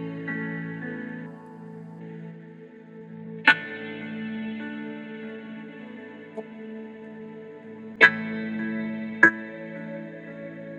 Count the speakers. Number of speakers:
0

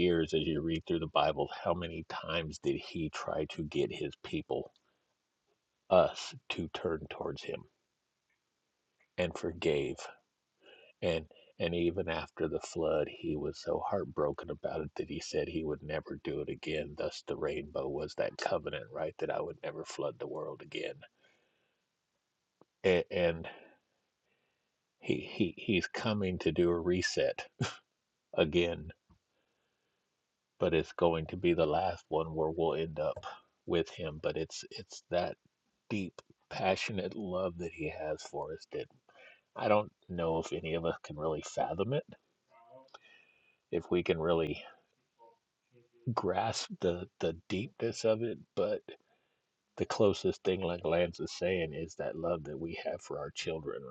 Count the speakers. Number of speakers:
1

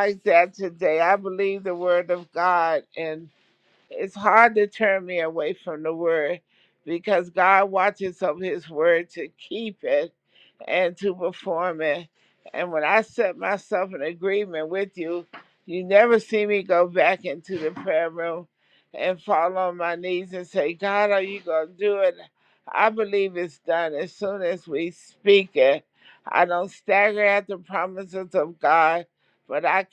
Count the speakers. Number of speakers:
1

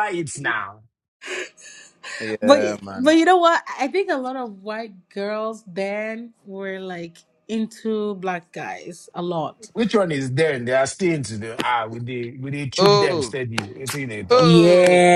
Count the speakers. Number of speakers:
3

